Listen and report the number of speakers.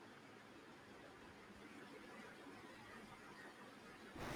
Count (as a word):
zero